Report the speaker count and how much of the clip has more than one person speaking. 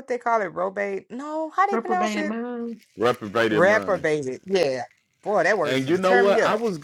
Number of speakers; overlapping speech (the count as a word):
three, about 31%